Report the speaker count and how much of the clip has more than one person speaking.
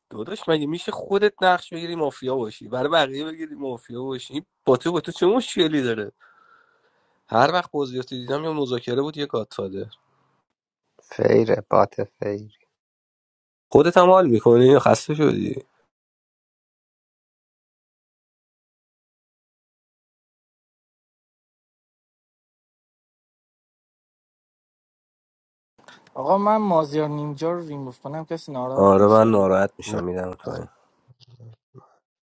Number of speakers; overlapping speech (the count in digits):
3, about 3%